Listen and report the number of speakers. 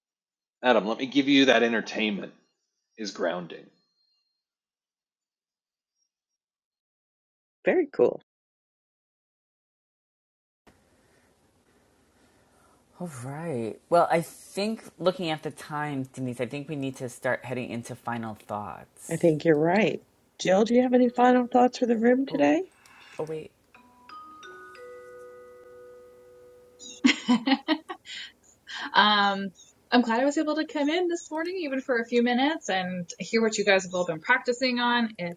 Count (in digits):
4